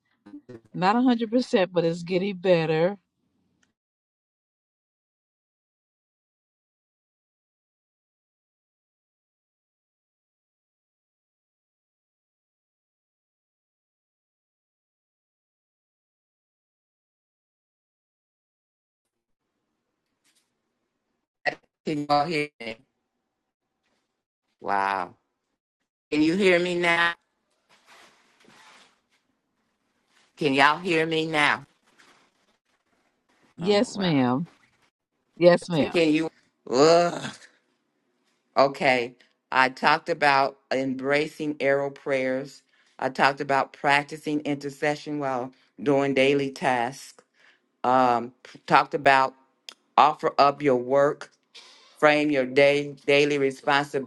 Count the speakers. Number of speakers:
two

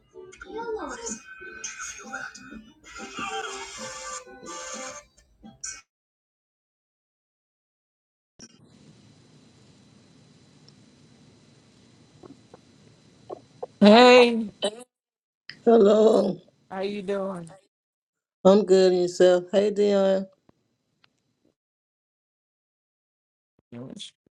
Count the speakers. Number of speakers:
two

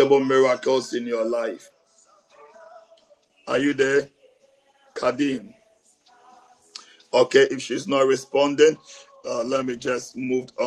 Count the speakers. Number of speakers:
one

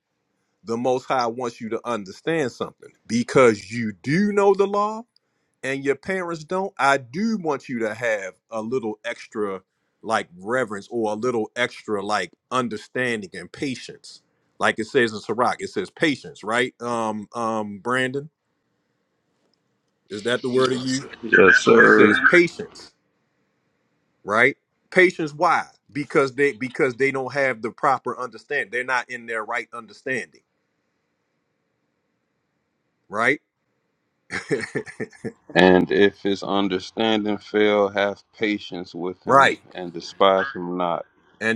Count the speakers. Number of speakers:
two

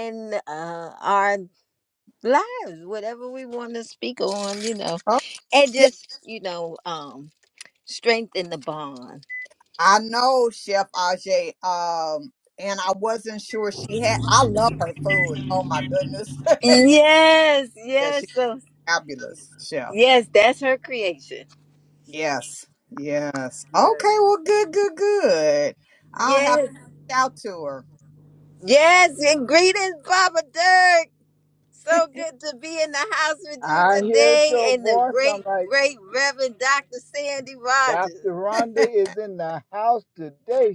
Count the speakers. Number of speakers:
three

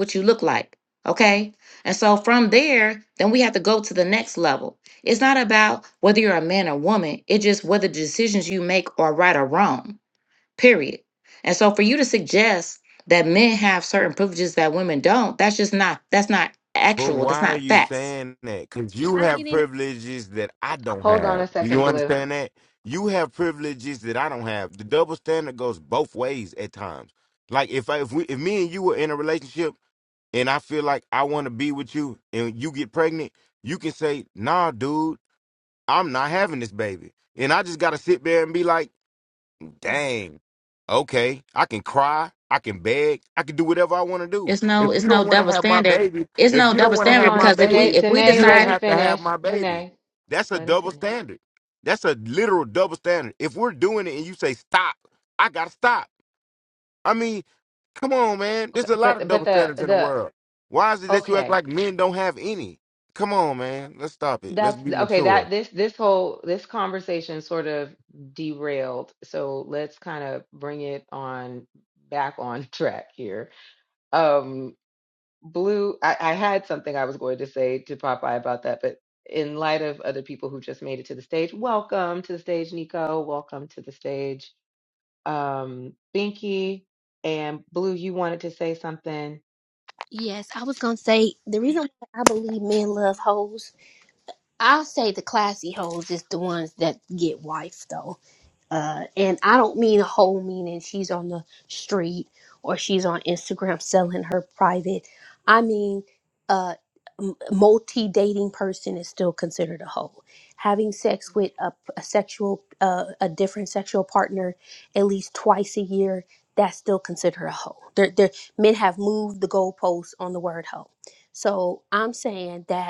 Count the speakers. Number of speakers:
four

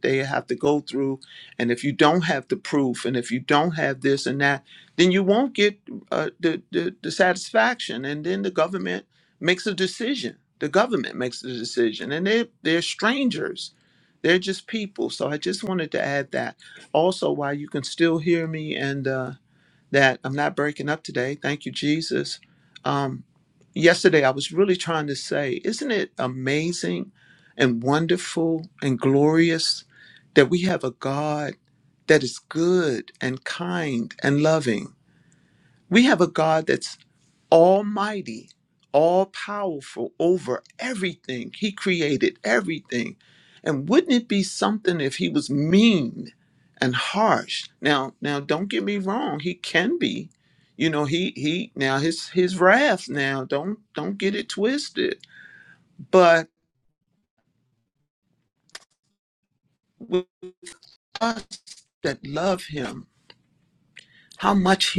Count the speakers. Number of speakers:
one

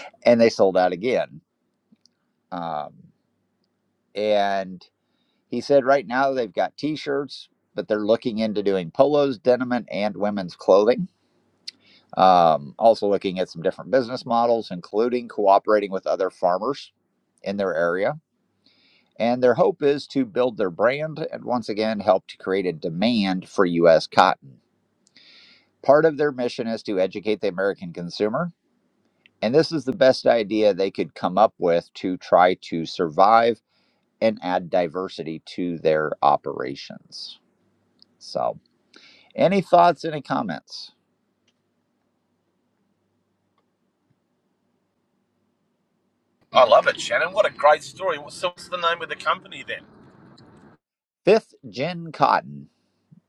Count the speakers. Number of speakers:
two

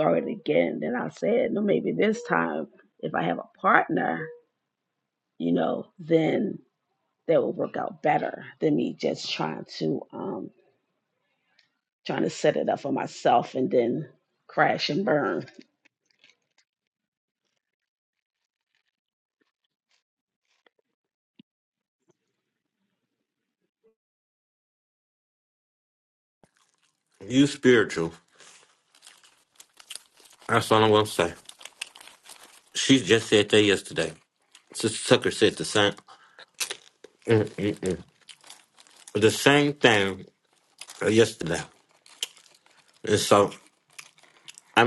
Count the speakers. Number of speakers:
two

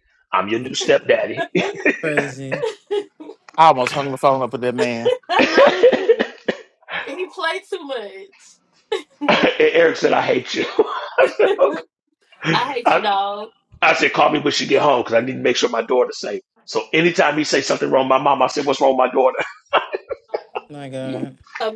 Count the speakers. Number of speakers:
four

